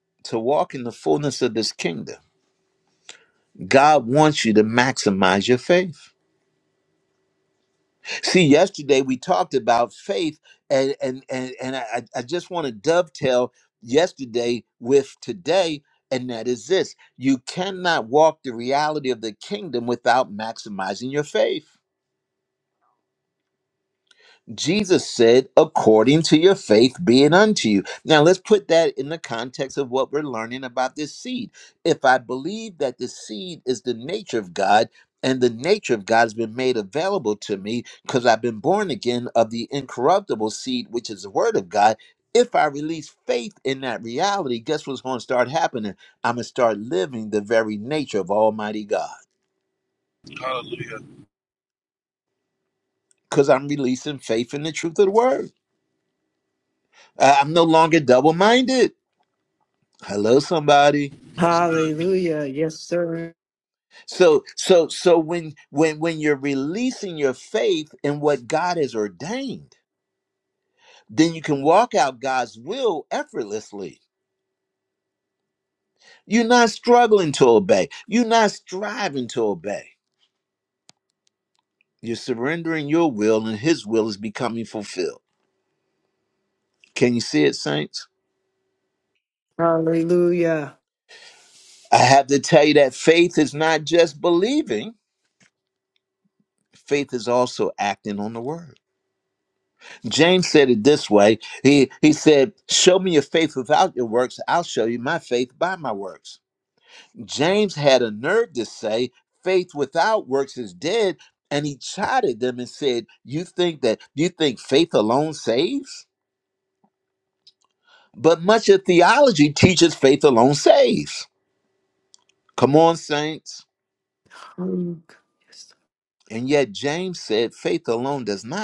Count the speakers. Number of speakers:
three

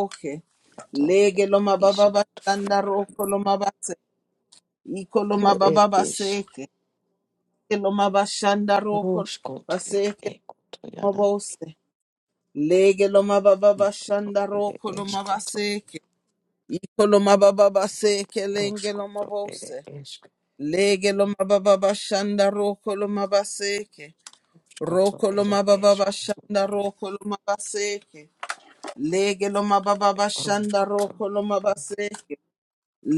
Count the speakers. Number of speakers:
two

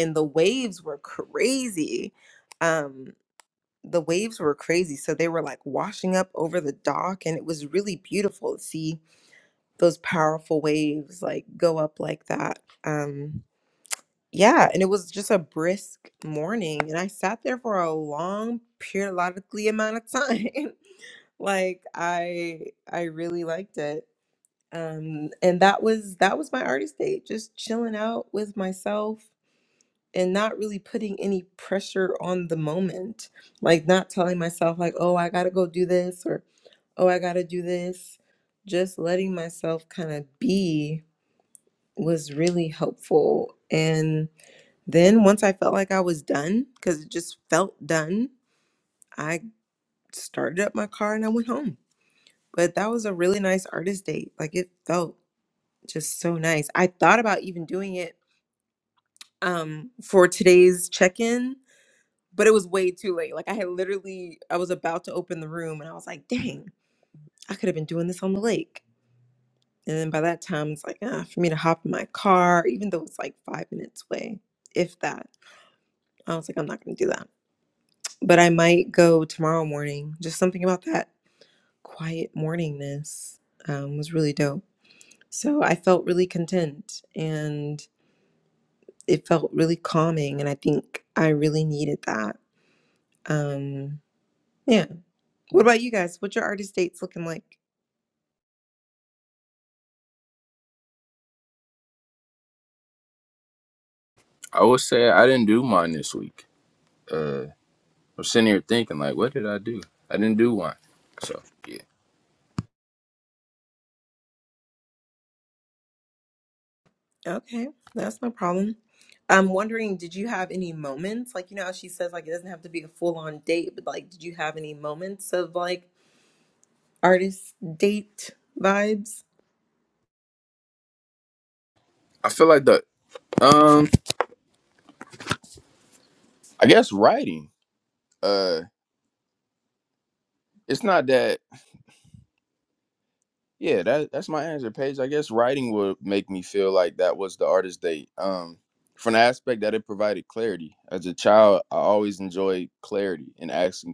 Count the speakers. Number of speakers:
two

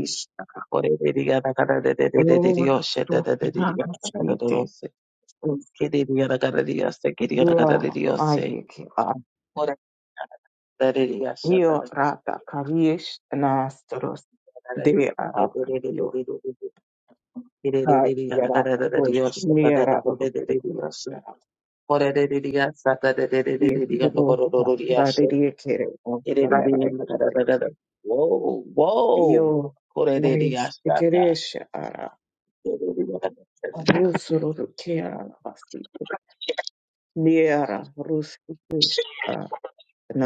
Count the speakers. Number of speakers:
two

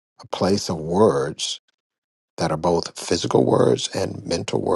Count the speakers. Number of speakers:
one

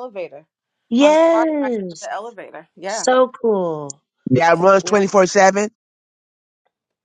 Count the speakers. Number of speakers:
three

